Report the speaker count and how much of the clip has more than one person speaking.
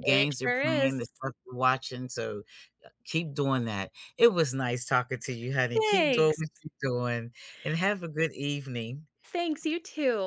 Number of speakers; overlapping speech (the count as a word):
two, about 15%